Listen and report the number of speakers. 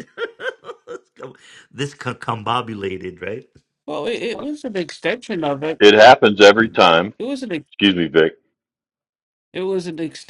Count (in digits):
3